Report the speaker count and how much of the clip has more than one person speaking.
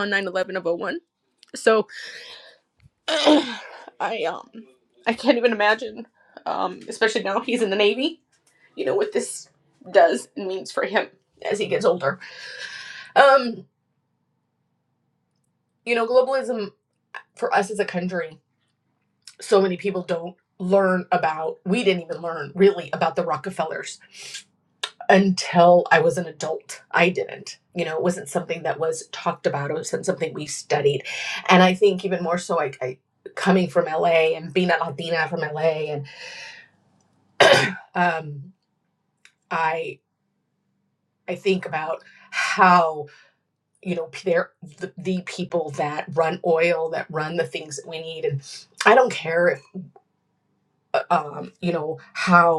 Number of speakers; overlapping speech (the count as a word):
one, no overlap